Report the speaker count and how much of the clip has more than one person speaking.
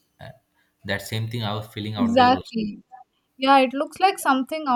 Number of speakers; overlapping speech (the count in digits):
2, about 11%